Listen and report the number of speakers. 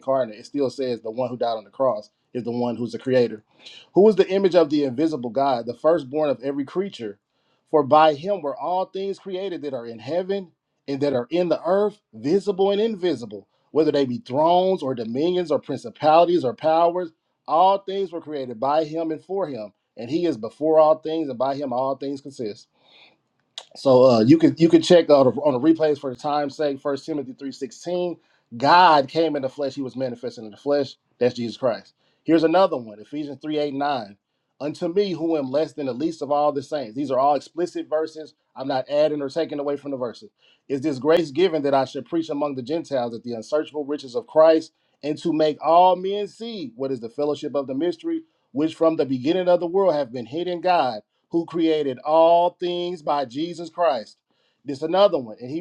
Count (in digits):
1